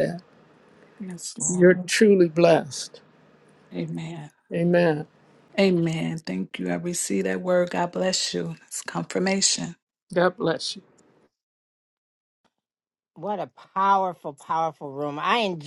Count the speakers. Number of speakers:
three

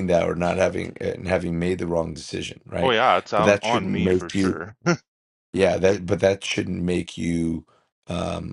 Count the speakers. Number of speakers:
two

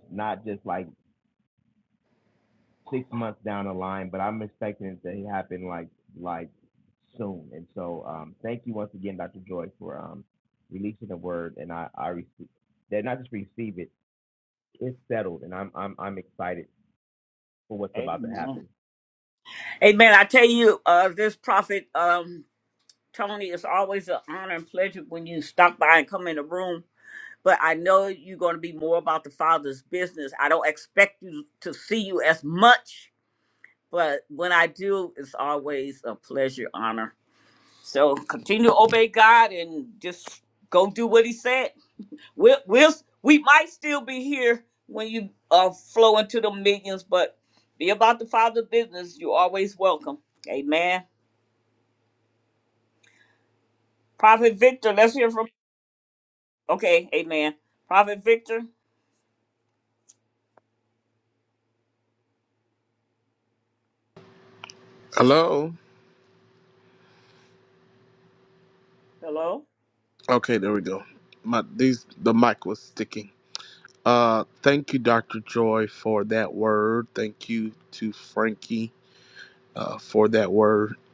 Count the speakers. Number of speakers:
three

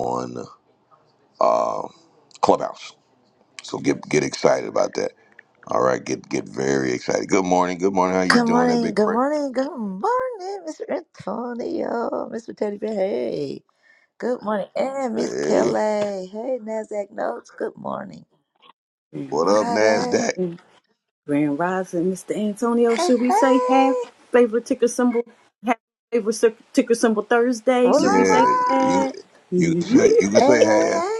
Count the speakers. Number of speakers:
three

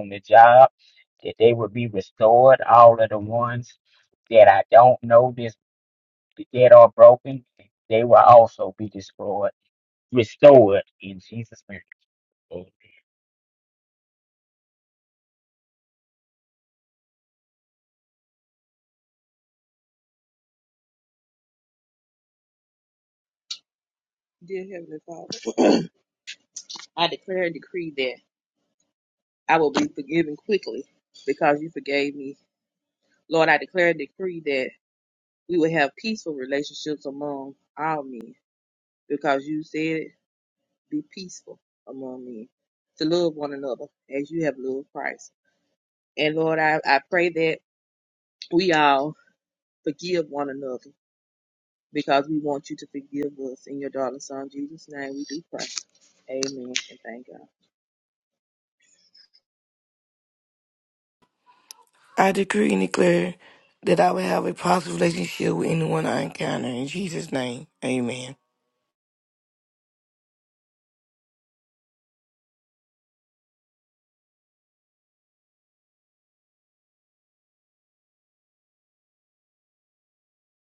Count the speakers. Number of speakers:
three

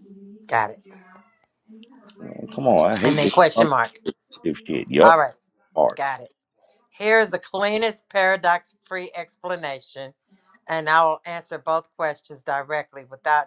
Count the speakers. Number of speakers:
two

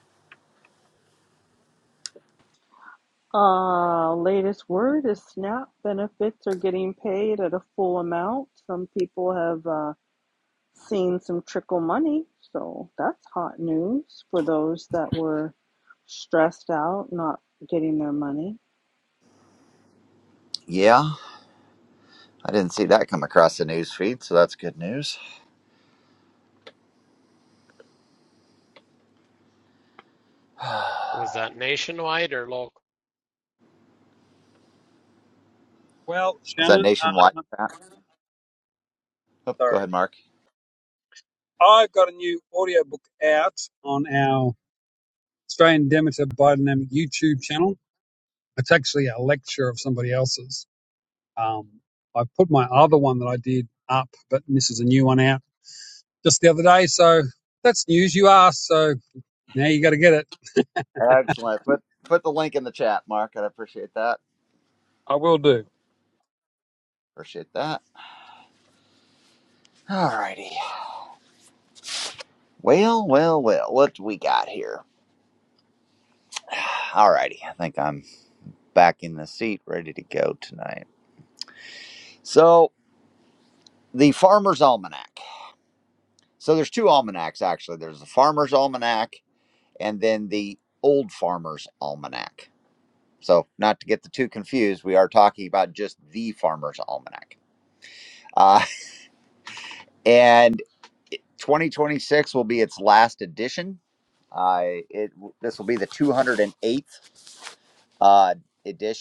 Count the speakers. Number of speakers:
four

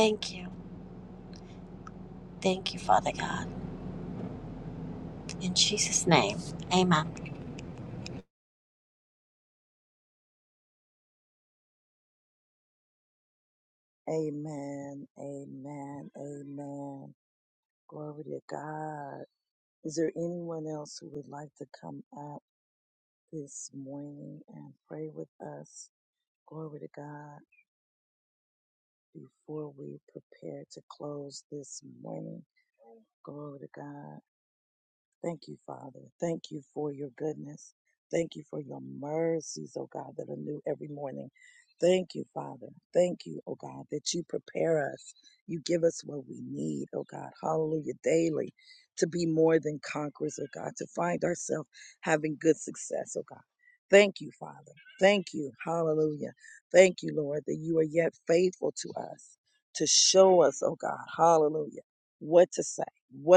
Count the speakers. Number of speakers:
two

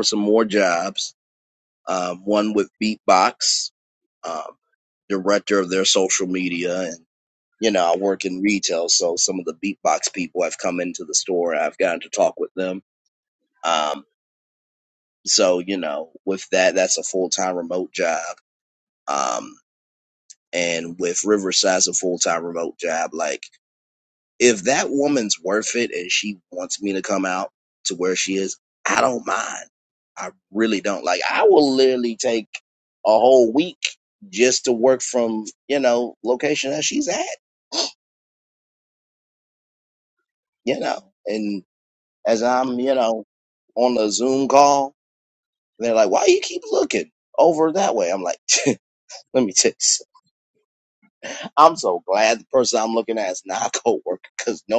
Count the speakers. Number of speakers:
one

